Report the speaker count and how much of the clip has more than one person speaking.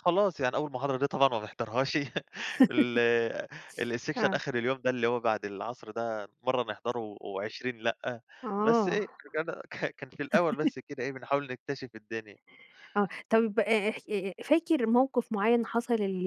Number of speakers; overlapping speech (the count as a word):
two, about 4%